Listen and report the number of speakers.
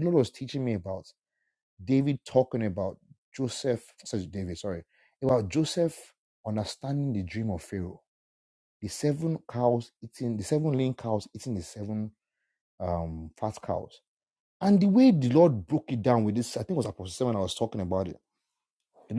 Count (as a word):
one